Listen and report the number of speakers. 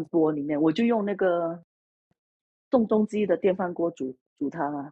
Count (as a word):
one